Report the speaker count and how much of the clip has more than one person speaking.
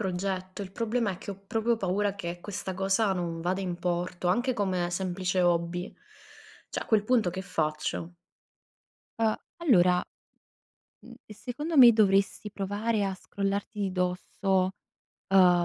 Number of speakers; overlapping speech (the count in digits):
2, no overlap